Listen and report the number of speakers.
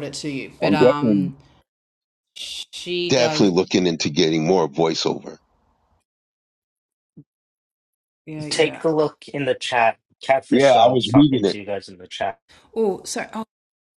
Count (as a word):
three